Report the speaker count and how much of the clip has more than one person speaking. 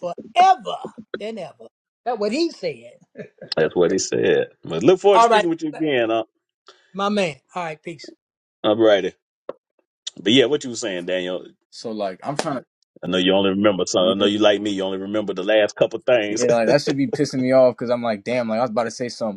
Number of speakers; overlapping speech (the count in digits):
3, about 4%